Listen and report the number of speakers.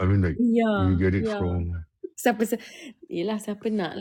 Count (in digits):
2